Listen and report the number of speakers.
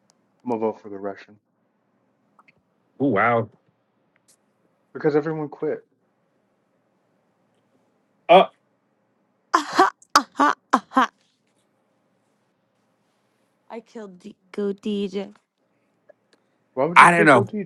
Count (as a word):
three